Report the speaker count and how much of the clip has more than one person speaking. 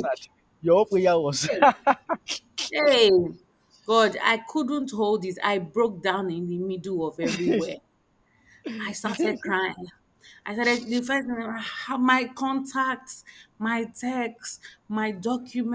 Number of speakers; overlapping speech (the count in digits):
2, about 2%